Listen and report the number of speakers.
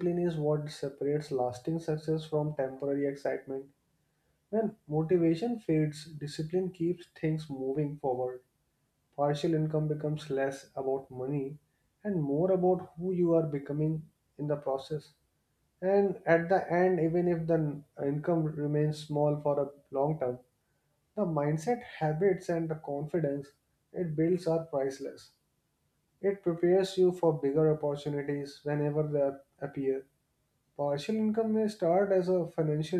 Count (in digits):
1